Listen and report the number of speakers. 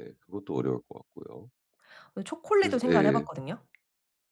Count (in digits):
2